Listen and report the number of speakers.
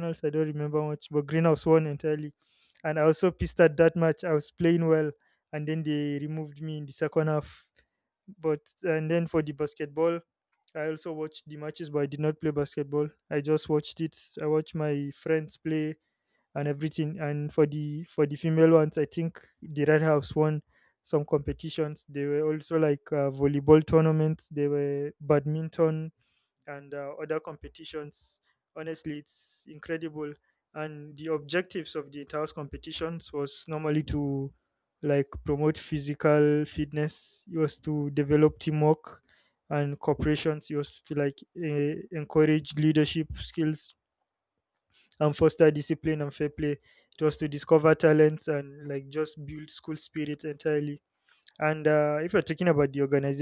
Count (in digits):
1